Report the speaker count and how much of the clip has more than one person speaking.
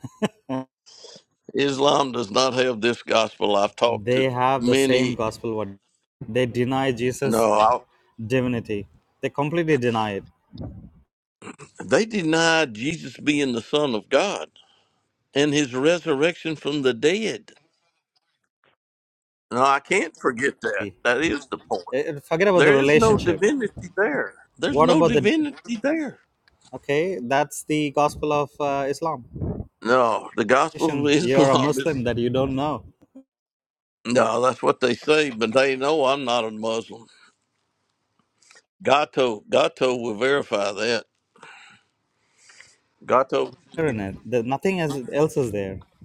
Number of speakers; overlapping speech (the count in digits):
2, about 8%